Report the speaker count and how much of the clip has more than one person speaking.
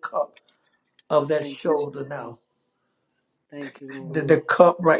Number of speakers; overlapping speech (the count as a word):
two, about 15%